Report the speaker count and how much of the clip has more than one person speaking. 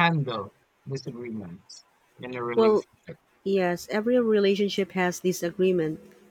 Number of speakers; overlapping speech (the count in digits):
2, about 3%